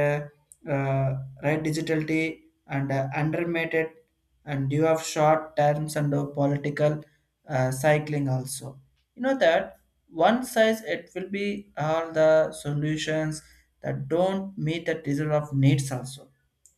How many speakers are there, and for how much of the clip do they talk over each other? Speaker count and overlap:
1, no overlap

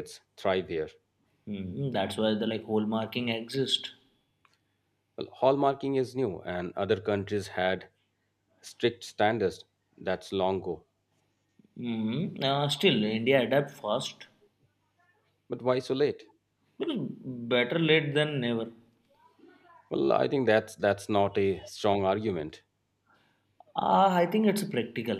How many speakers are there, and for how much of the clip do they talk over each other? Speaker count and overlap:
2, no overlap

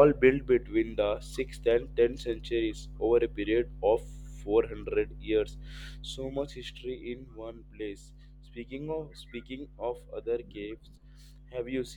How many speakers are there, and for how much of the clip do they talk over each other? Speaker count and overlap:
1, no overlap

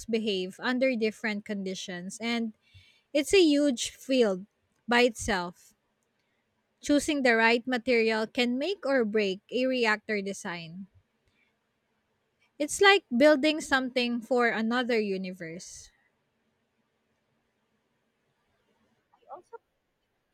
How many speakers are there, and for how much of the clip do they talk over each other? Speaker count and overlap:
1, no overlap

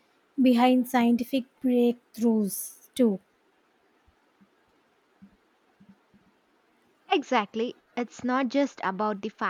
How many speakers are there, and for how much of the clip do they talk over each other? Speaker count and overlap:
2, no overlap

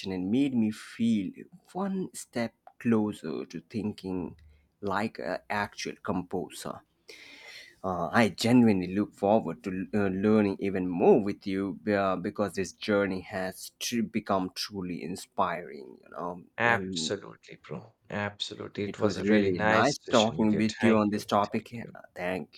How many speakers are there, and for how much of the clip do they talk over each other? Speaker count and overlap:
2, about 16%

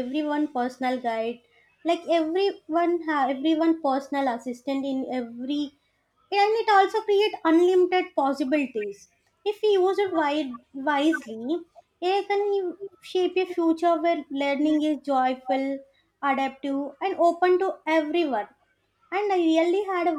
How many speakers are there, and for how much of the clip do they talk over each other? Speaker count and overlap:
1, no overlap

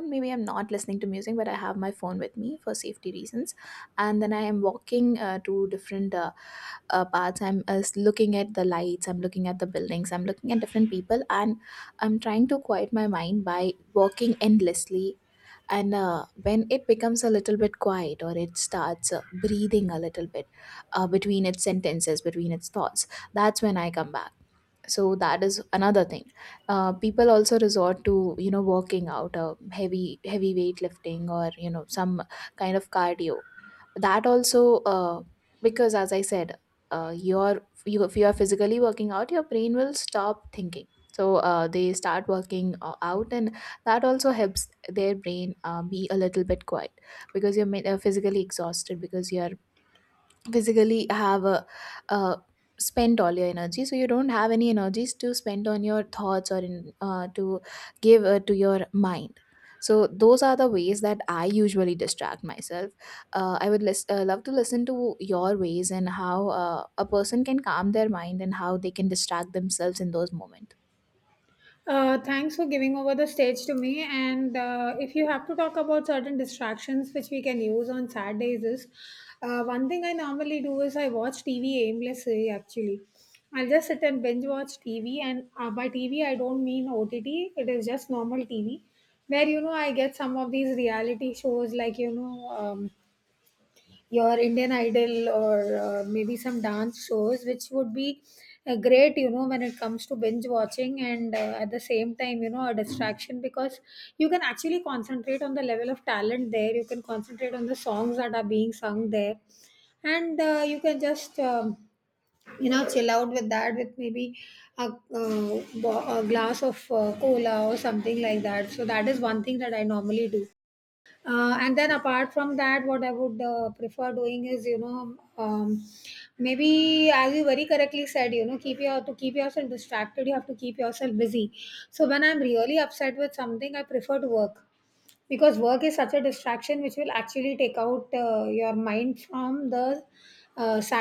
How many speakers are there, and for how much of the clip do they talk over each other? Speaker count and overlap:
2, no overlap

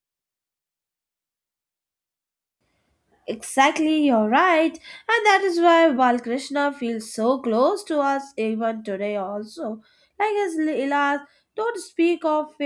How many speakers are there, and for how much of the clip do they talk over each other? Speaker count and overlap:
1, no overlap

